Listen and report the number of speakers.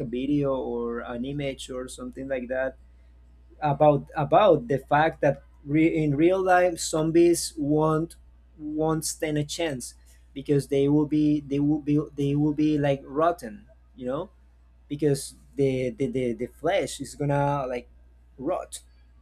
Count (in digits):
1